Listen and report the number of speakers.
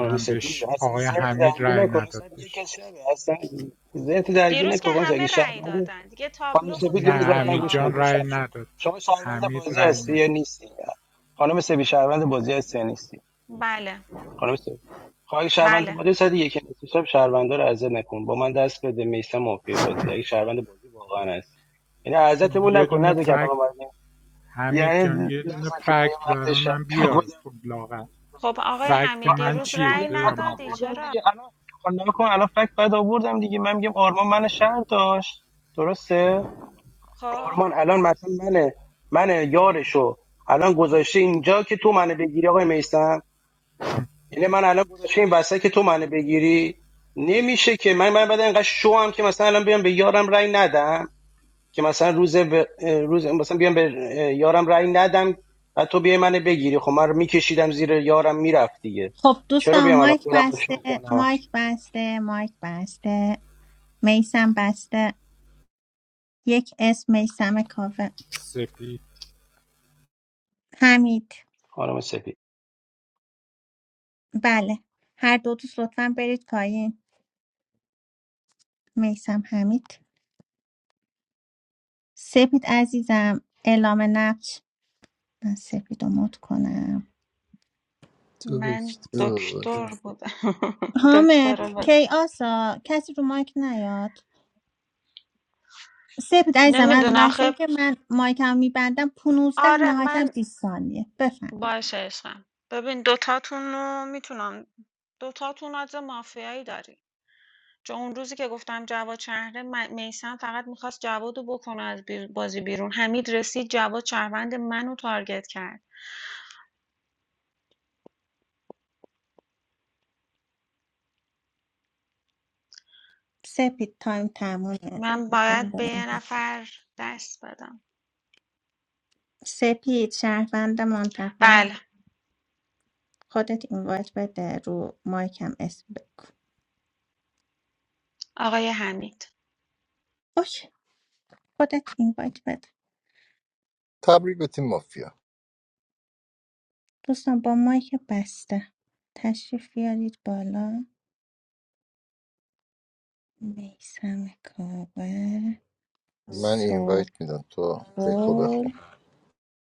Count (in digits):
5